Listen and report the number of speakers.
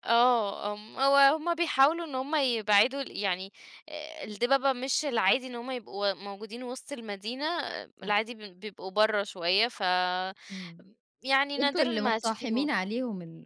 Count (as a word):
two